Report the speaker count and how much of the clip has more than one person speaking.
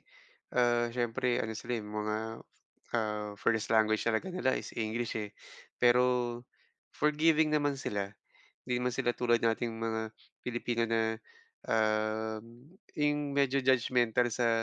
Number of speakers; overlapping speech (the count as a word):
one, no overlap